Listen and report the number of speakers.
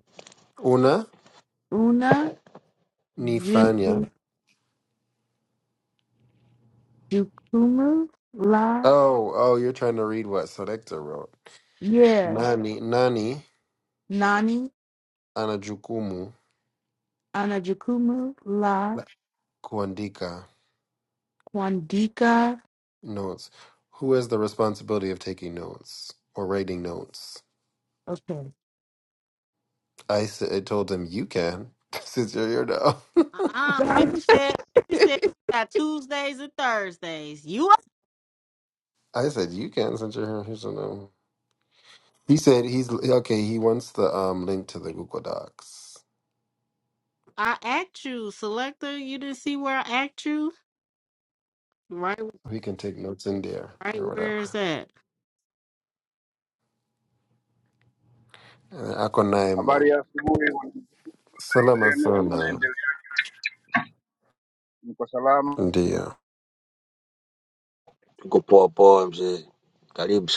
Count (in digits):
5